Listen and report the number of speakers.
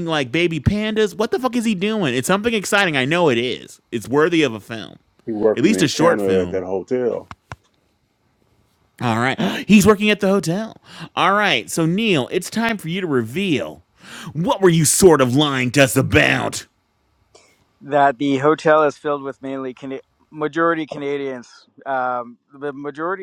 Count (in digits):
3